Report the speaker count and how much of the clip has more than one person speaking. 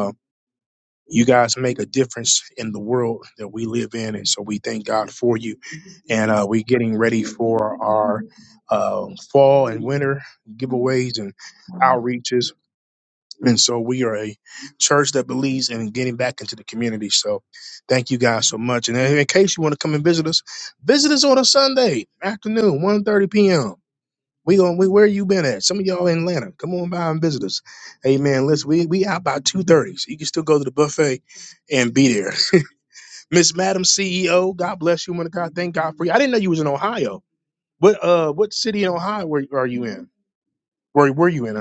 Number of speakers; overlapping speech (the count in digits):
1, no overlap